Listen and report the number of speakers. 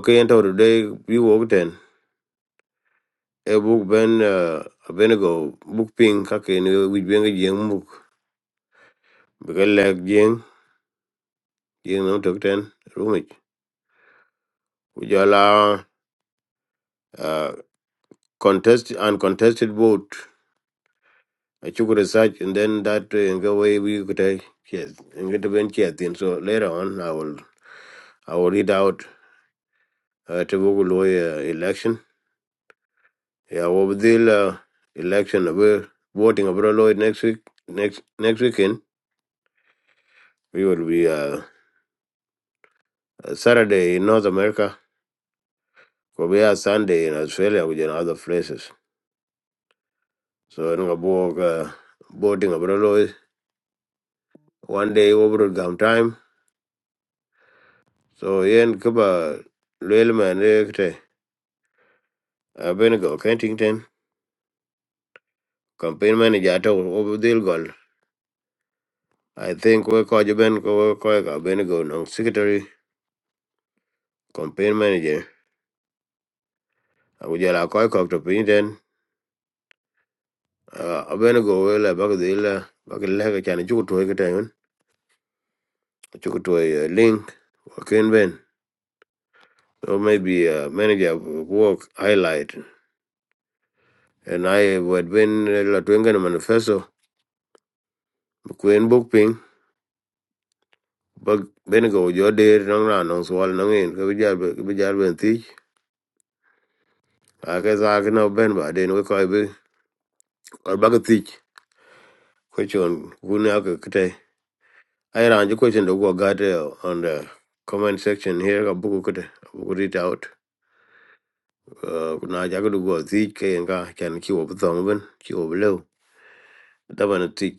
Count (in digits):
1